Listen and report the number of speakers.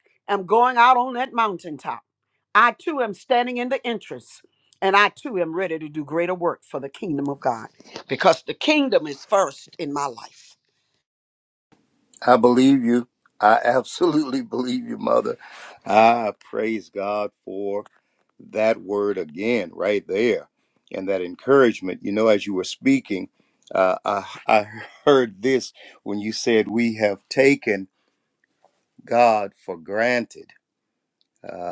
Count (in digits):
2